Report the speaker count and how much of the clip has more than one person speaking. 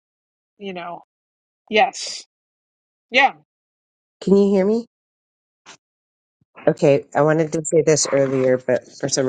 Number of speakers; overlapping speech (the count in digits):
2, no overlap